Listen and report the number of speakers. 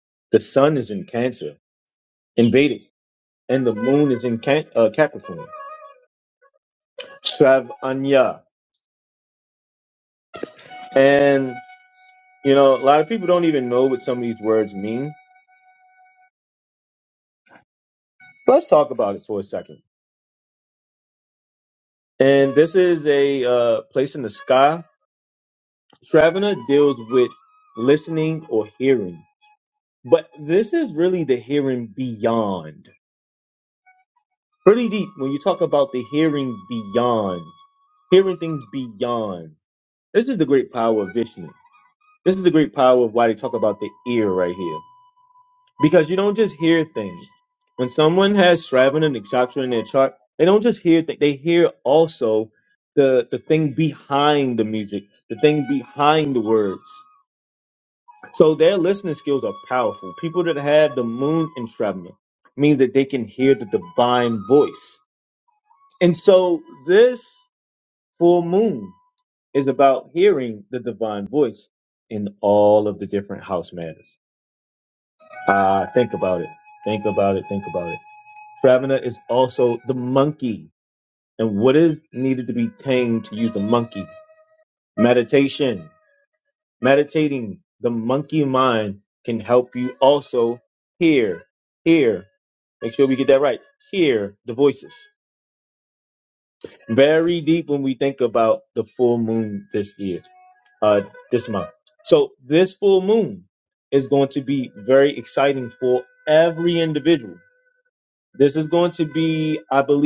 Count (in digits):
1